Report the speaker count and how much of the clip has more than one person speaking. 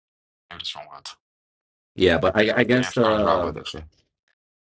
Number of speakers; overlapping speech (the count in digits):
2, about 18%